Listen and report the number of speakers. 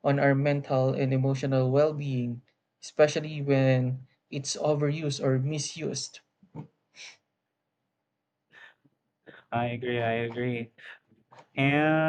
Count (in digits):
2